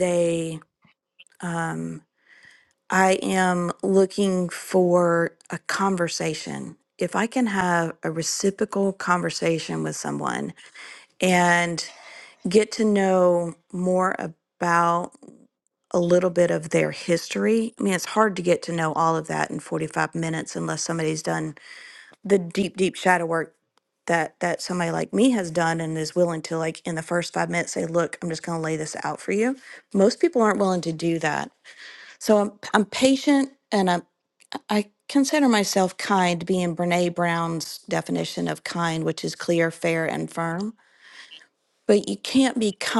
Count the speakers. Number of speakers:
1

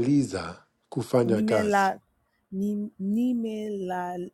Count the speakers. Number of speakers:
2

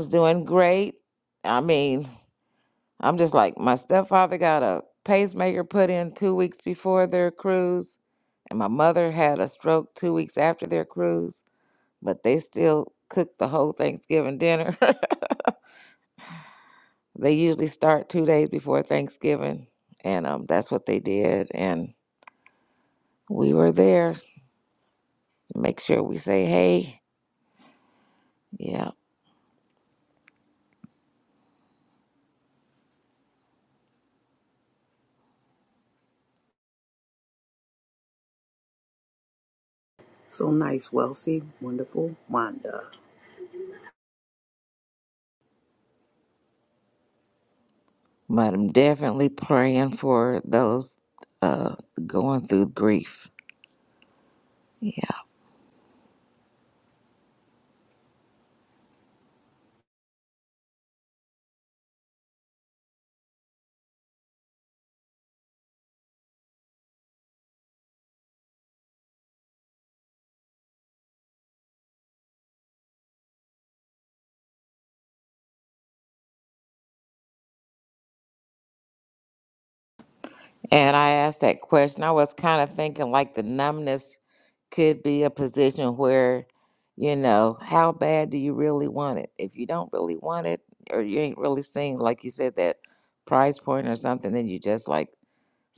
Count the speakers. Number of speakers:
2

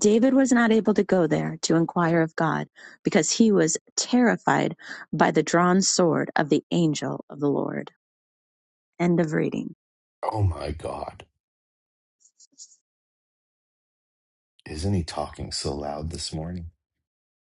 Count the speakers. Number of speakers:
2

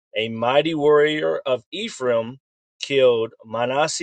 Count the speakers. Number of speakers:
1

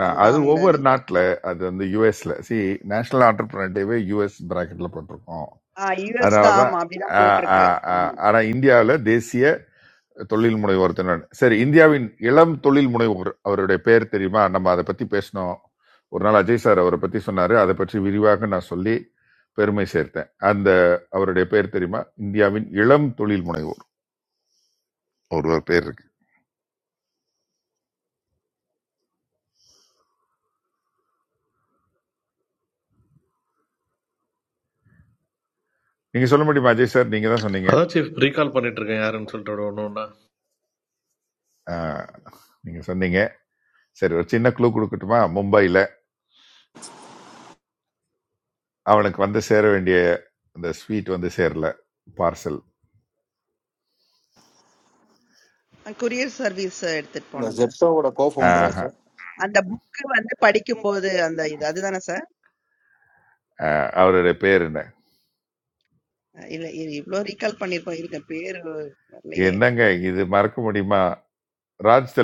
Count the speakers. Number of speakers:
4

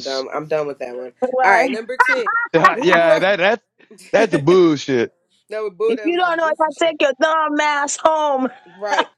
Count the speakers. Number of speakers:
3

